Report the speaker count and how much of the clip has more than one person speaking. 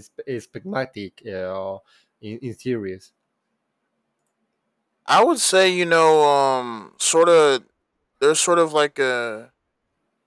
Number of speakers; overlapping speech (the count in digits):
2, no overlap